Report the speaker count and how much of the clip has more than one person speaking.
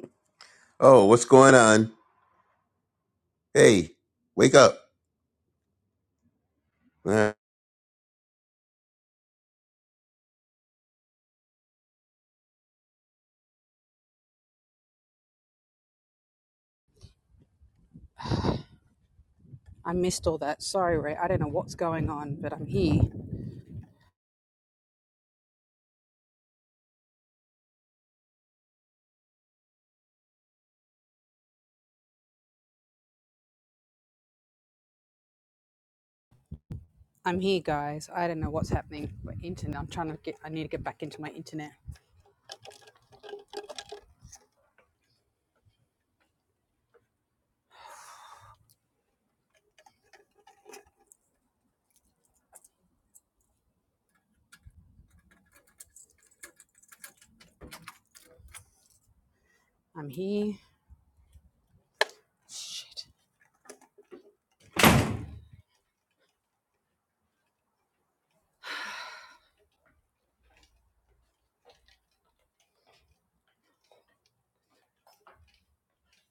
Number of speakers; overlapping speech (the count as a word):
two, no overlap